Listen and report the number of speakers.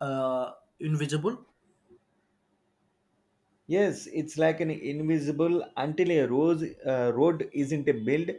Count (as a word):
two